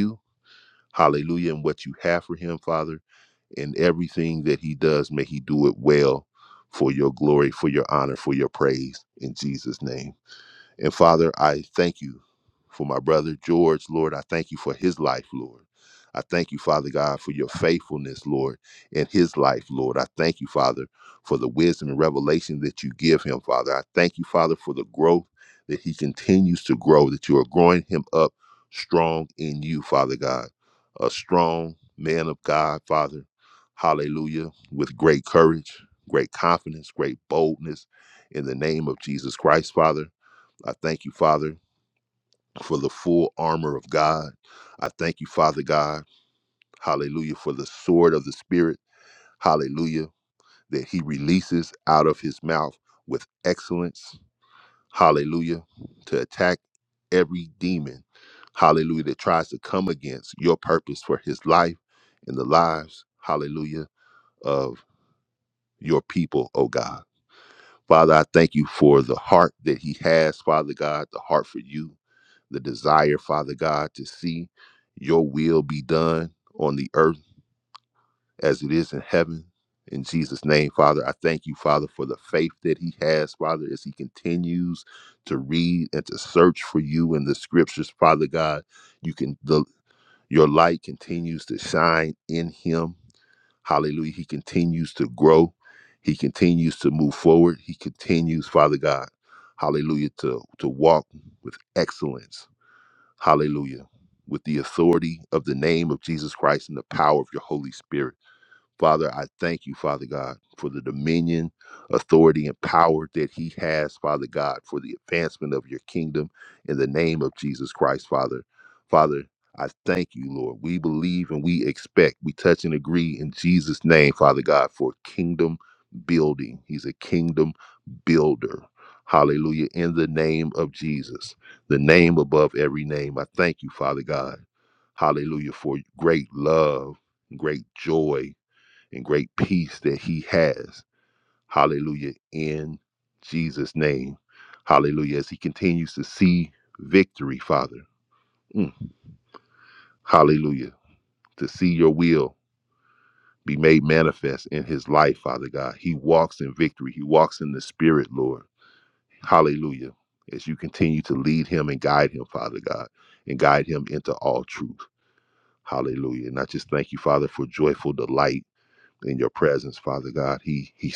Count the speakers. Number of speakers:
1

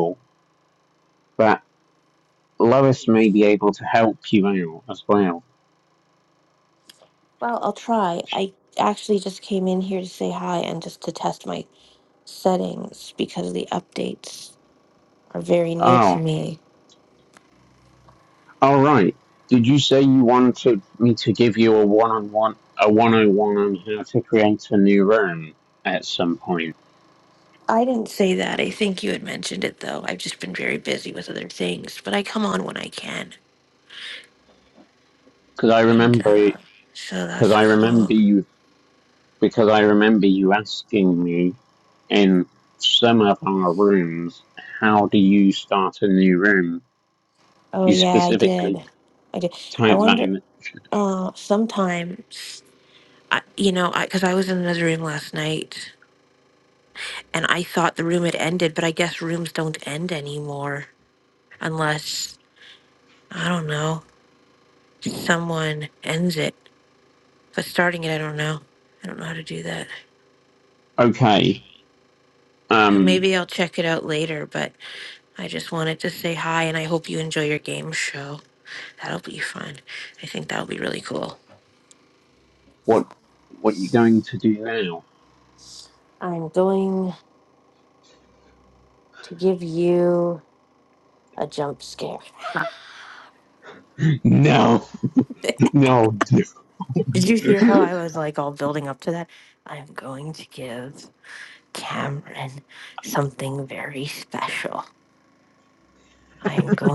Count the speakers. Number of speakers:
2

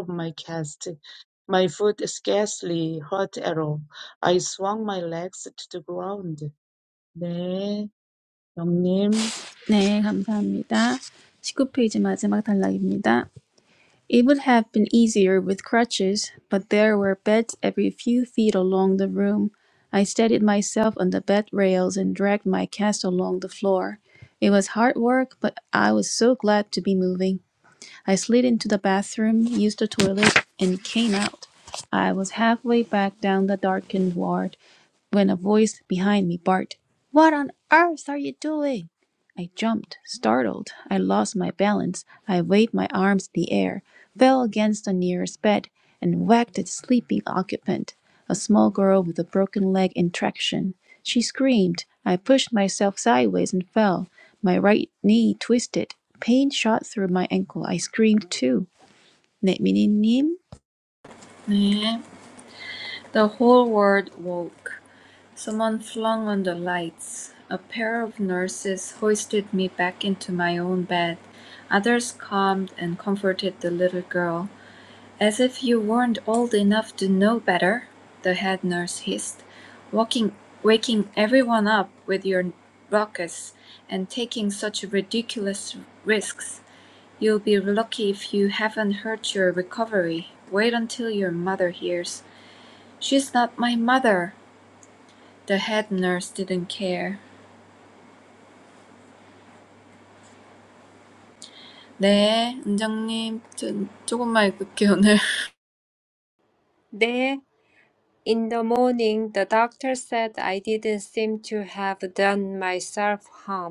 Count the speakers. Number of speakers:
4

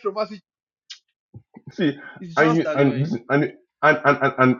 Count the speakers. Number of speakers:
2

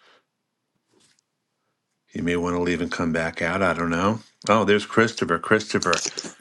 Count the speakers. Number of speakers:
1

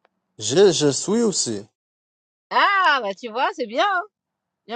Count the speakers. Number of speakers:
2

